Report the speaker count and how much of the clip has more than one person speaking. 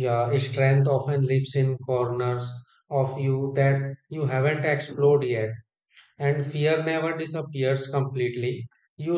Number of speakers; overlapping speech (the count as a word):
one, no overlap